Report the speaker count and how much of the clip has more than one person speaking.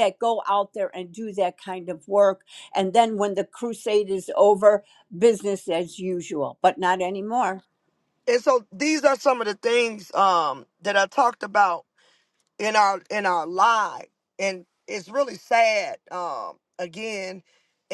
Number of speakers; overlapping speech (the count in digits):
2, no overlap